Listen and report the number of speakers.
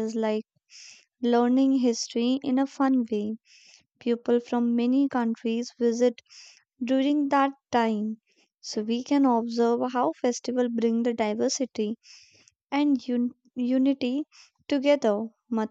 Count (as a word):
one